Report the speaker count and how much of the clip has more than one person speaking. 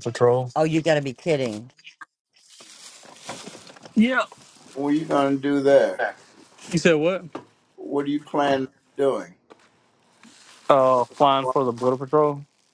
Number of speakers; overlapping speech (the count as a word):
three, about 1%